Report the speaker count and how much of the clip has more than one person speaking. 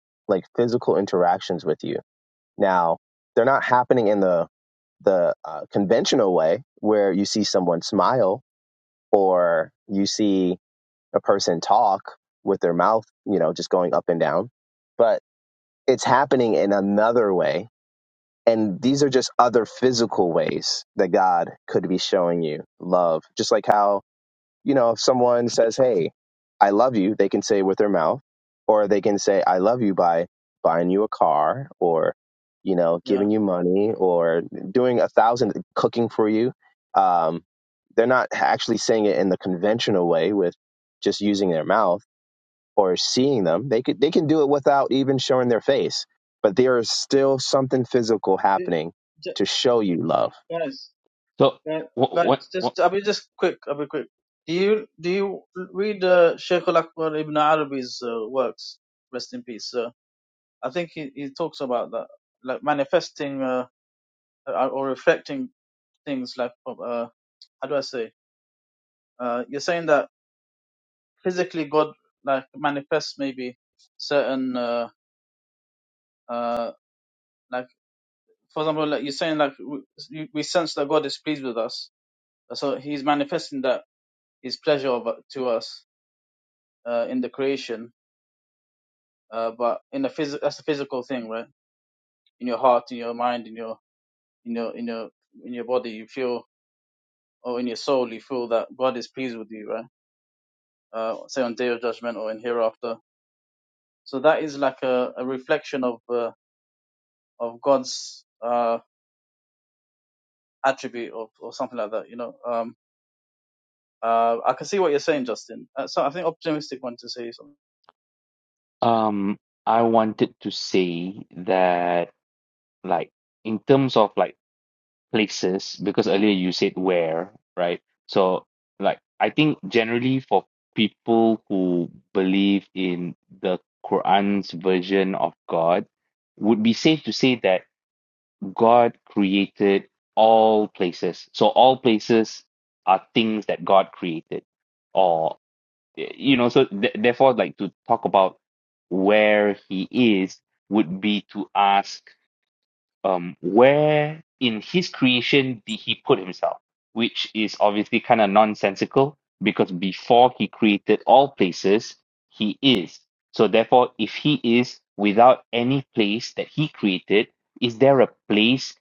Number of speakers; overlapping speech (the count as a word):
three, about 1%